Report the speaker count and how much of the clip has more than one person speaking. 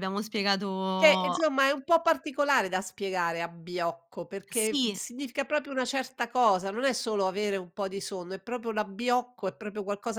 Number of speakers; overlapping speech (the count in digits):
2, about 7%